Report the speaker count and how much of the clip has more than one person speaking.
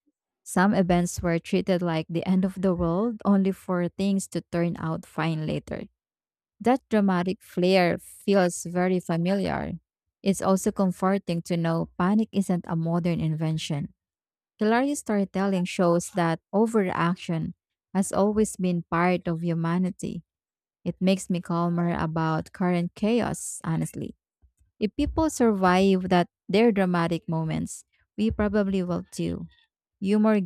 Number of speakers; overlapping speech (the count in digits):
1, no overlap